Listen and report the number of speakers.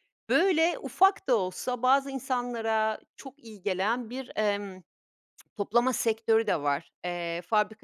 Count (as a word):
one